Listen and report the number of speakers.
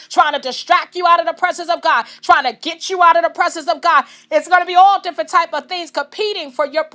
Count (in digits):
1